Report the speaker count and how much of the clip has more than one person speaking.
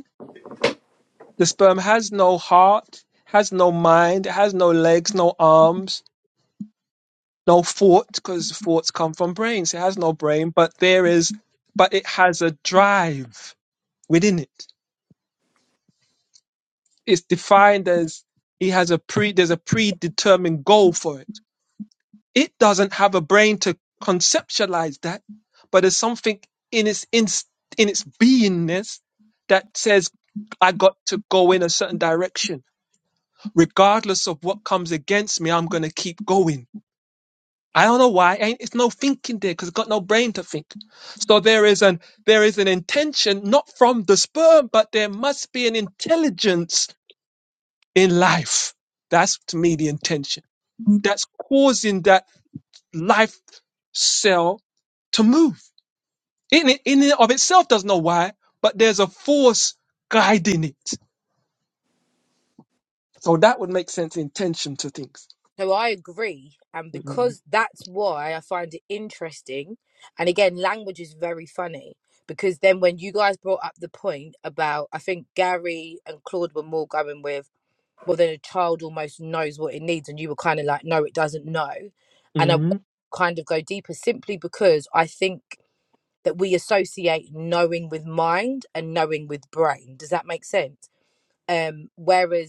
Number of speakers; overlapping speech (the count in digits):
2, under 1%